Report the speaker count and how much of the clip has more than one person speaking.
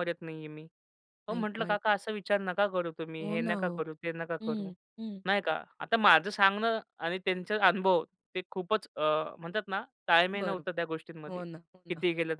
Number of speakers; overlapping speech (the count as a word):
two, about 16%